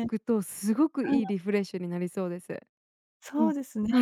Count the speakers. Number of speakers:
two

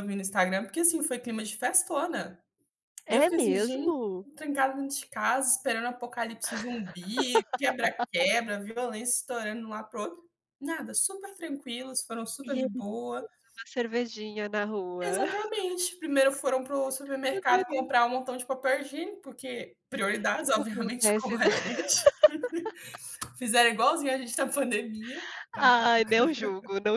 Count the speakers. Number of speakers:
two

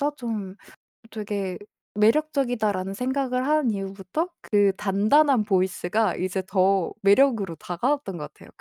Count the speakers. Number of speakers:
one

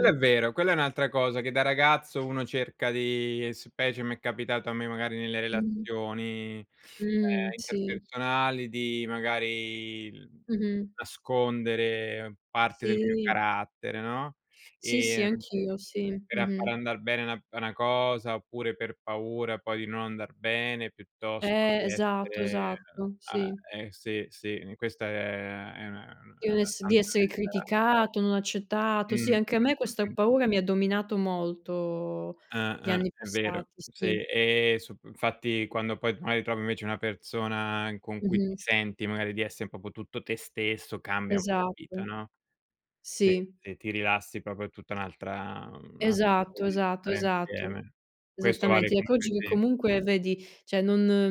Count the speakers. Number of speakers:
two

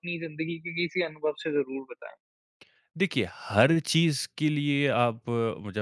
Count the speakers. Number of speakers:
two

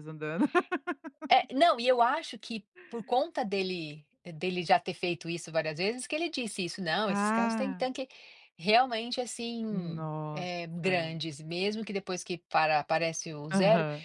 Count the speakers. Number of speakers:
two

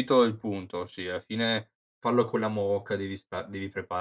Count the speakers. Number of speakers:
one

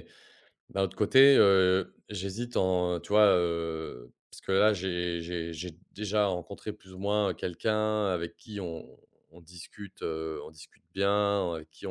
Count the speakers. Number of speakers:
one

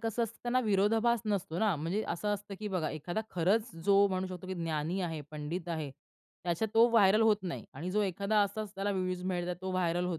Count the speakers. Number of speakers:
one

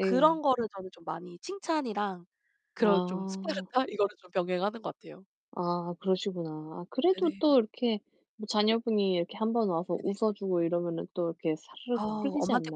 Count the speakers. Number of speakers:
two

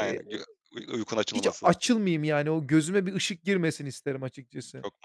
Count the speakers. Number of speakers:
two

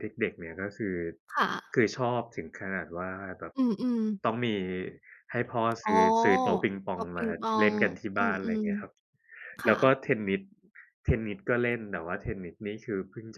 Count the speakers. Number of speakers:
two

